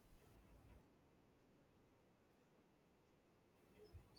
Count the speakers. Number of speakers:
0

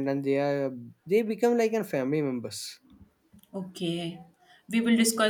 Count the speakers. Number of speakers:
2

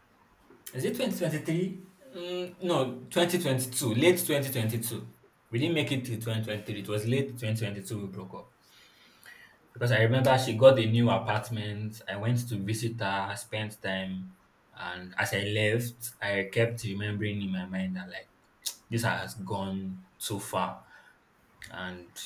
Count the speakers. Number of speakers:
1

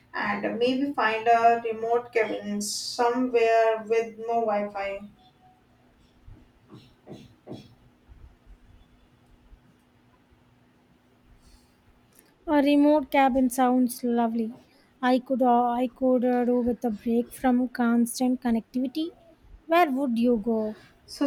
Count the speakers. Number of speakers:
2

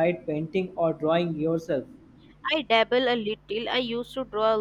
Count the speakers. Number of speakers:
2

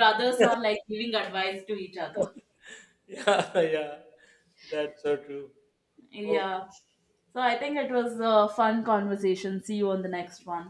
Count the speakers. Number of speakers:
2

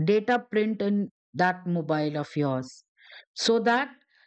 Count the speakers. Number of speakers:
1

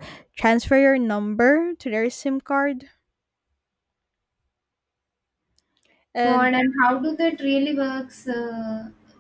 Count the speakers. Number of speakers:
2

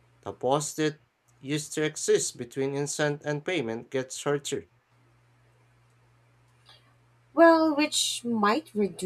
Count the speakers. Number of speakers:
2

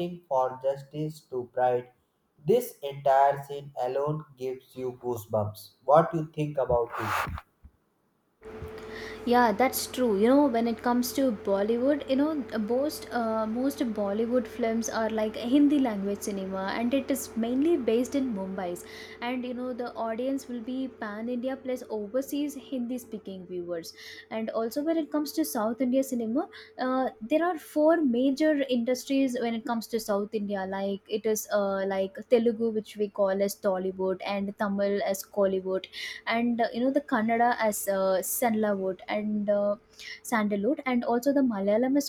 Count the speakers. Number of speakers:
2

